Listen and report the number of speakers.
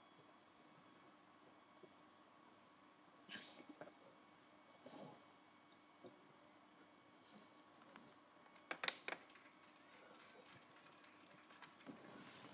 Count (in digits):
0